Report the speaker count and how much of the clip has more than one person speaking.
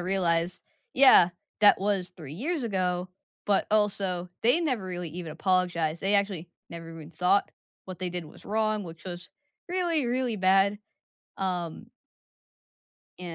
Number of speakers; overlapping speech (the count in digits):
1, no overlap